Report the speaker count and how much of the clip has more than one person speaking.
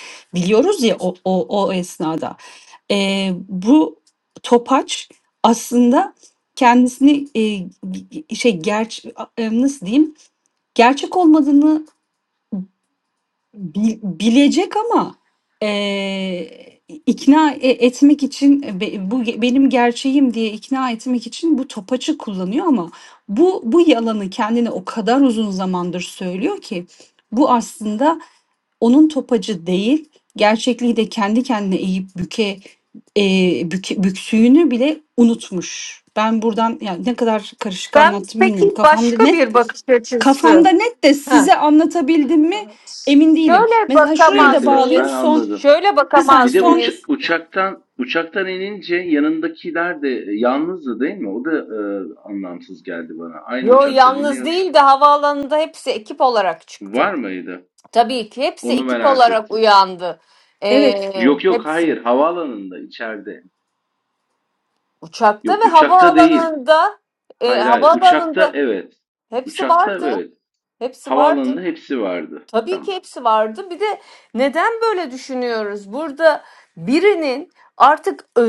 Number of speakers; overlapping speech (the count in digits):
3, about 16%